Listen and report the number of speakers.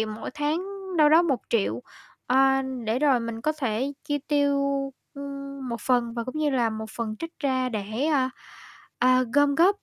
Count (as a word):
one